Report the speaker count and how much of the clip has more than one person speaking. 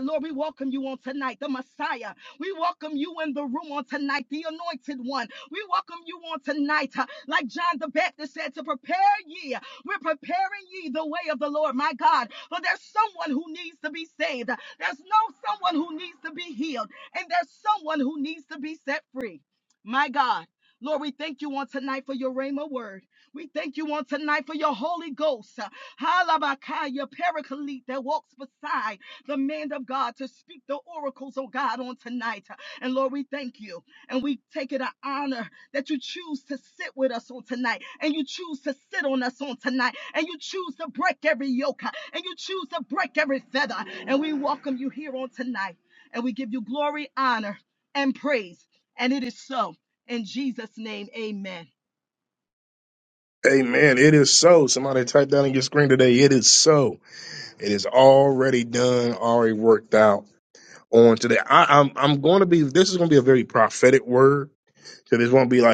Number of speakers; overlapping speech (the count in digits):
2, no overlap